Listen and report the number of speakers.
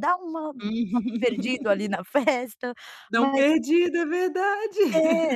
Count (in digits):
2